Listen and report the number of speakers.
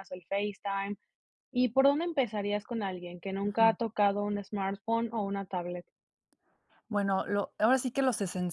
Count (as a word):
two